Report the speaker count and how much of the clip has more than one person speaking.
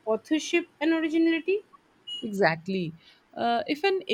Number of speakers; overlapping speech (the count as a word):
two, no overlap